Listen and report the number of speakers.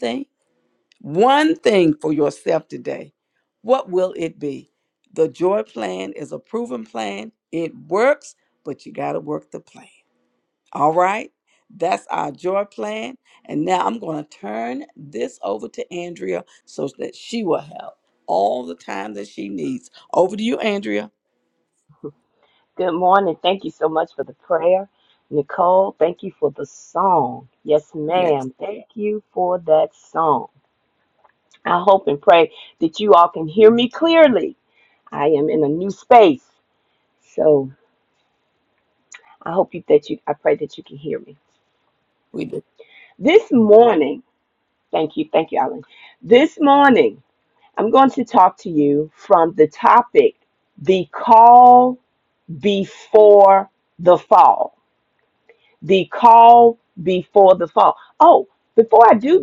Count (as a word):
two